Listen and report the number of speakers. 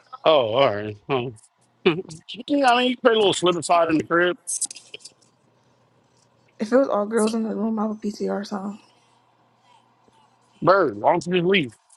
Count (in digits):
2